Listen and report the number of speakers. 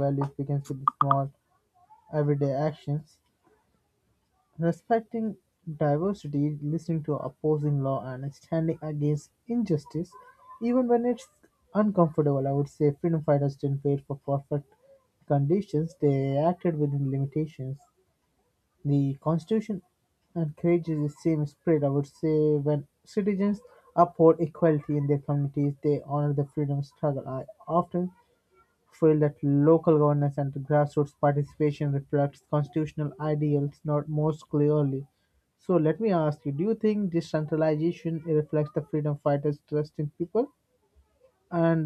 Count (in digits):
1